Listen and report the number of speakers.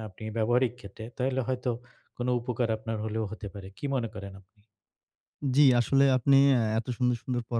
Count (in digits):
2